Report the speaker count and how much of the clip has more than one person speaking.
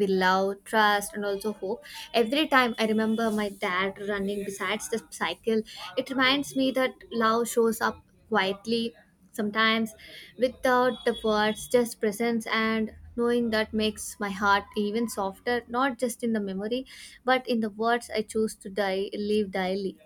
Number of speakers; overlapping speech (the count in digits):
1, no overlap